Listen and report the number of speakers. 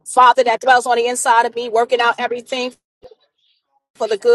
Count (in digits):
1